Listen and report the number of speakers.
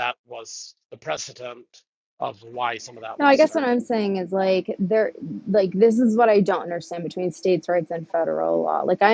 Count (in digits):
2